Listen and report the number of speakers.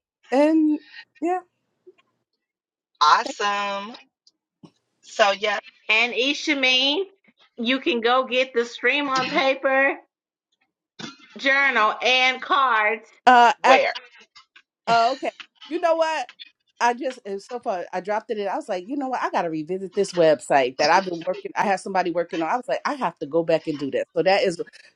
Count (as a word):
three